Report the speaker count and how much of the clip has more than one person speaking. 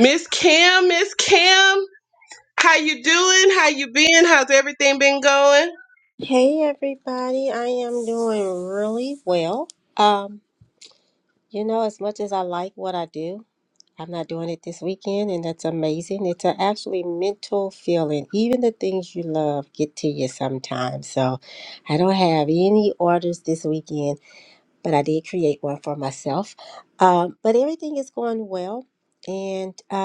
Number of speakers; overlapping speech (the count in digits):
2, no overlap